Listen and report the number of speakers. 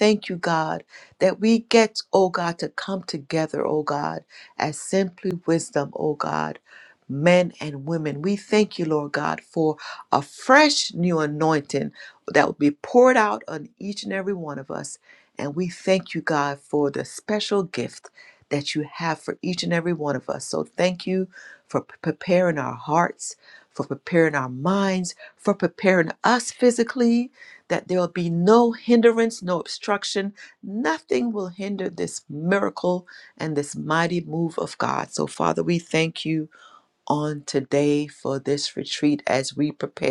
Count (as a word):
one